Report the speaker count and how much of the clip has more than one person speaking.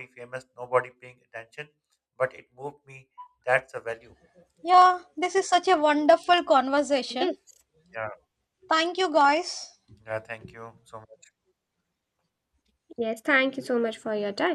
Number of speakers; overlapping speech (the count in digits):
3, about 2%